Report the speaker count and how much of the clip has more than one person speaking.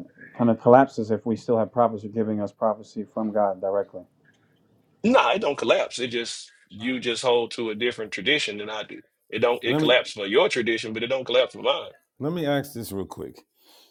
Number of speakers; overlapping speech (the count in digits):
3, about 3%